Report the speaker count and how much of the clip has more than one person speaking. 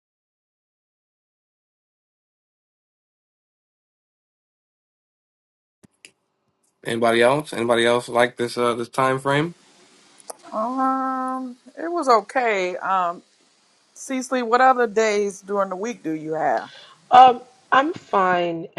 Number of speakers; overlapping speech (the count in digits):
3, no overlap